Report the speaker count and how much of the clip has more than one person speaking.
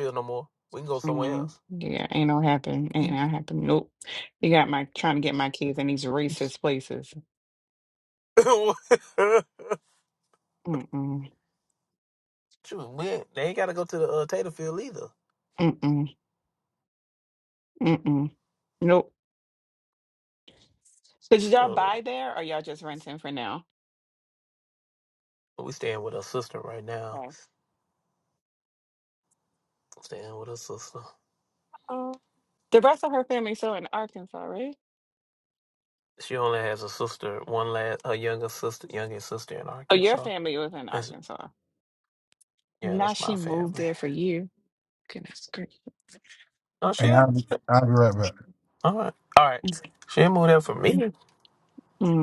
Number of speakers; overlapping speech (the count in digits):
3, about 6%